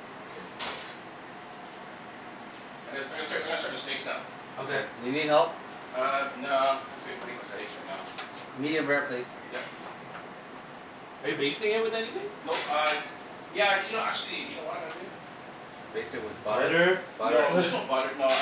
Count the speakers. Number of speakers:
3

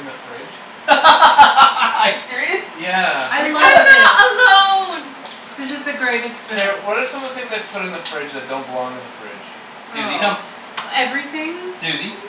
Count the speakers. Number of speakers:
4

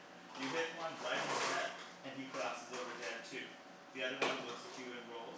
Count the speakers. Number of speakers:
1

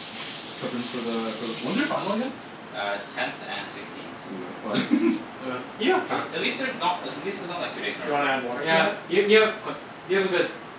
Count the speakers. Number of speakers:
4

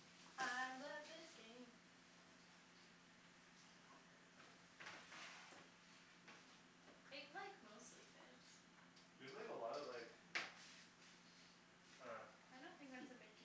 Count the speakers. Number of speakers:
2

